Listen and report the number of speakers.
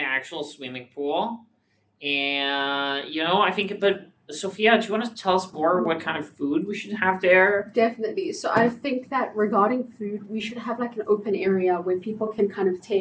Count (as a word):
two